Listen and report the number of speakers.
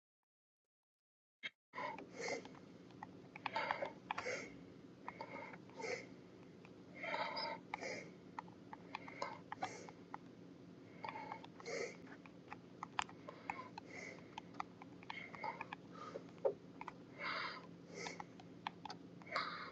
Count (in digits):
0